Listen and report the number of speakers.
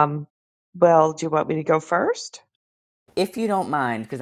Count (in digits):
2